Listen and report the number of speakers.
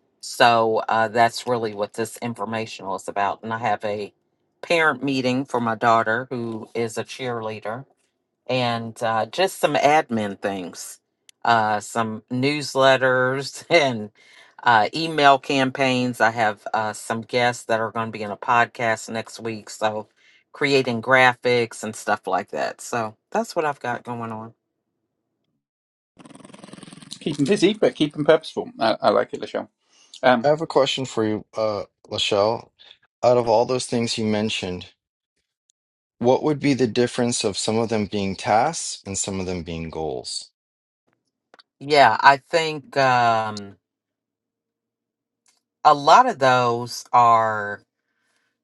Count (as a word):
three